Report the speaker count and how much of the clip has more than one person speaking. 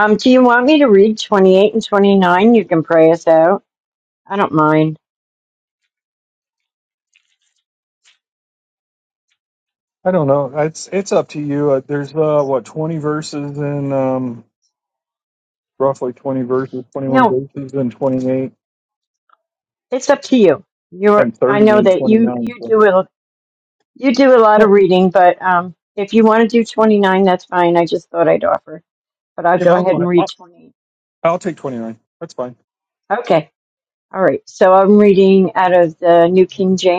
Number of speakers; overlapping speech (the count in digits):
2, about 7%